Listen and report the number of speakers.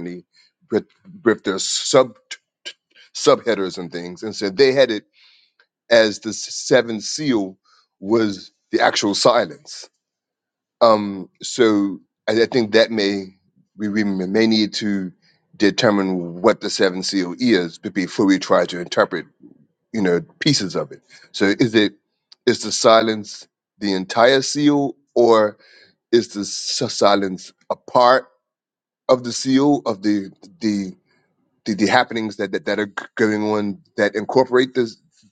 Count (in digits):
1